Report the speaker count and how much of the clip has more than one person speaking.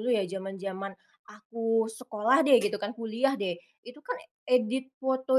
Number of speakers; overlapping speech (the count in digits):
1, no overlap